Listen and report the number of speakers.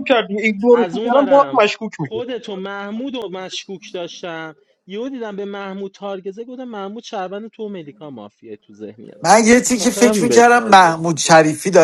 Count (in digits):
3